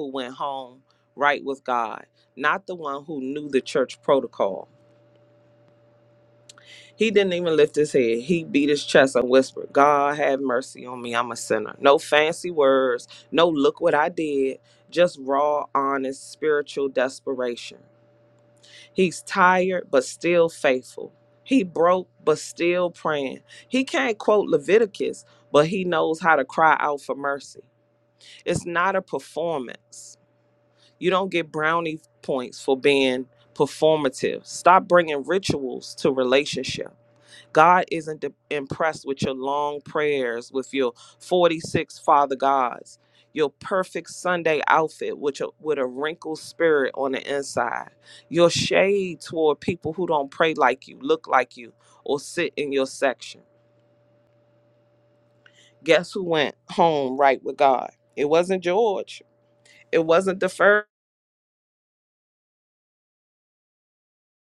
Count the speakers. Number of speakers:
1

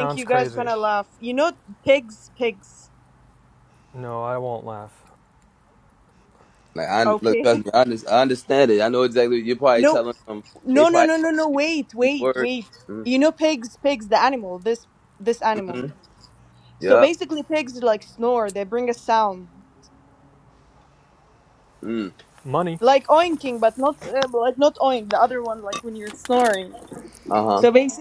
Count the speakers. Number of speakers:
3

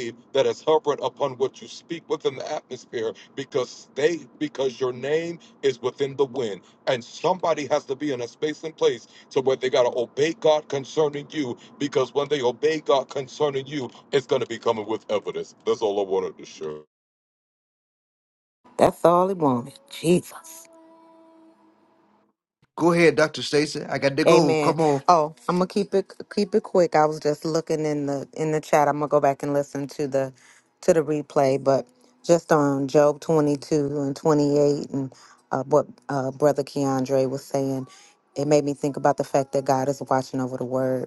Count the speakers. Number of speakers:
3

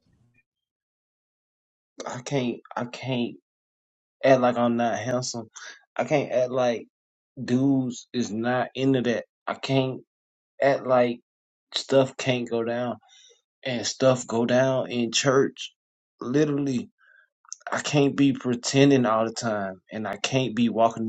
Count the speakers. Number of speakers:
1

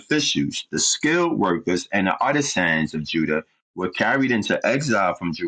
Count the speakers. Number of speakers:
1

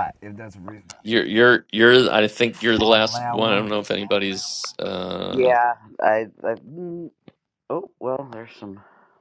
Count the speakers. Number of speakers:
3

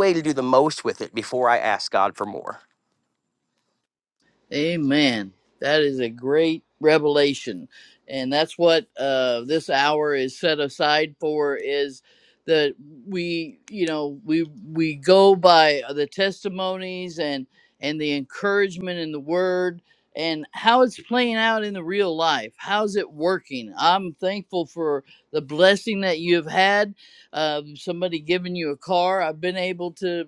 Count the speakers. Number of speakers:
2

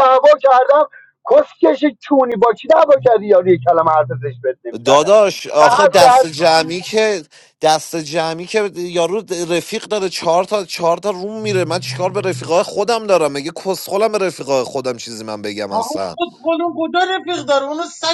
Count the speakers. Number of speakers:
3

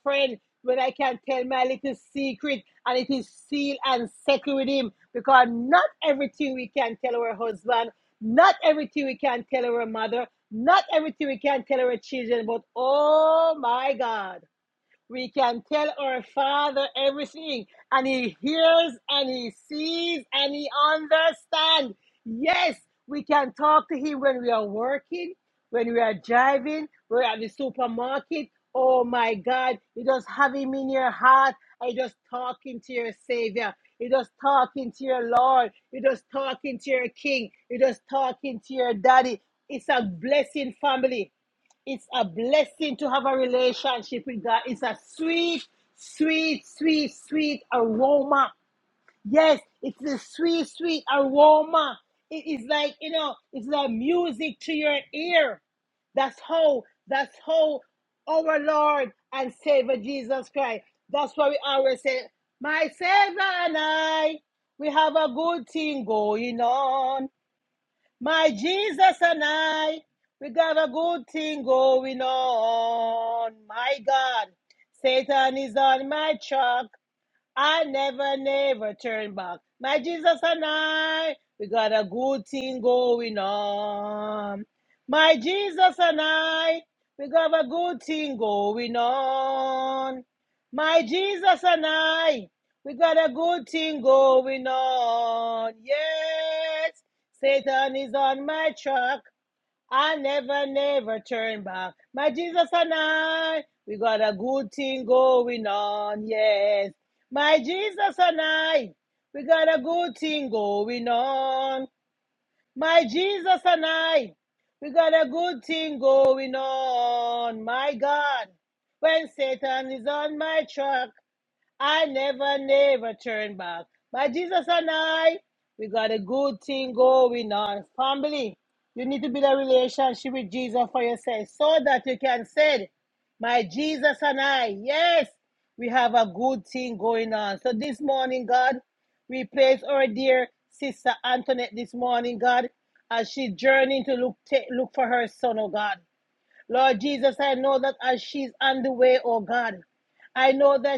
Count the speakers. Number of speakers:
1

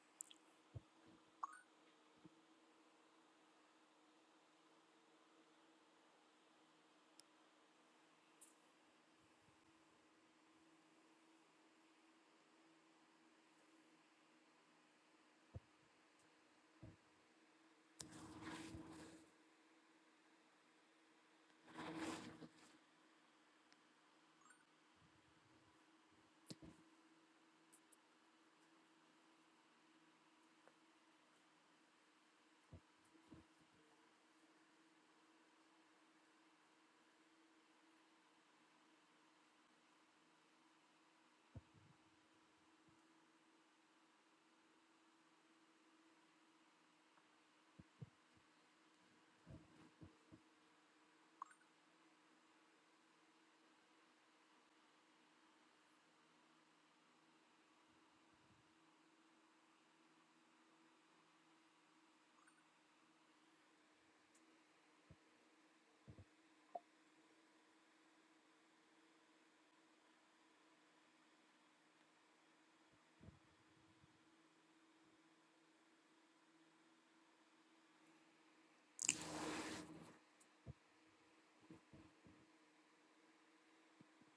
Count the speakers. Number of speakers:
0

